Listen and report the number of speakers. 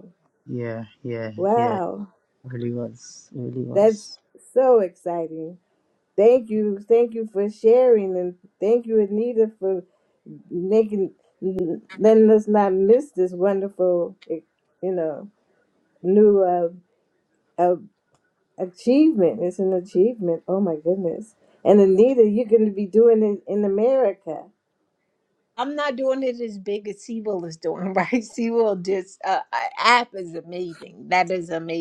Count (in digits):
3